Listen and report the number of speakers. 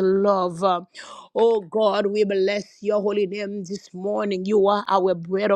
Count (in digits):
1